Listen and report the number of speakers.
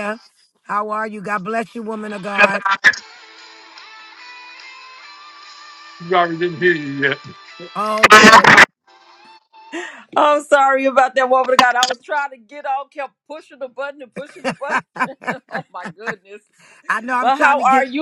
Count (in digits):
3